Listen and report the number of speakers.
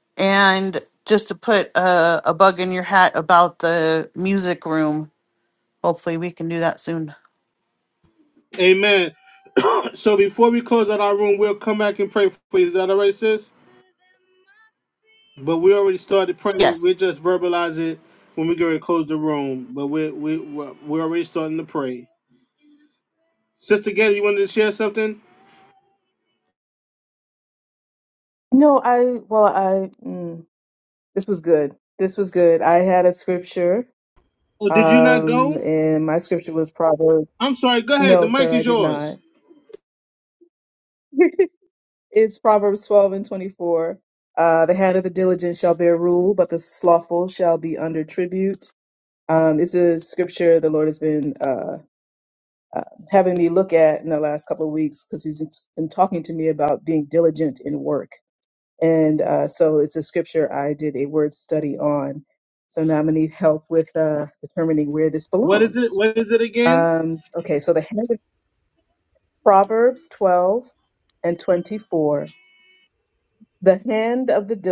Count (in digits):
3